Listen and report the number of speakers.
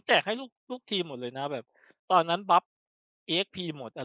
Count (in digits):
1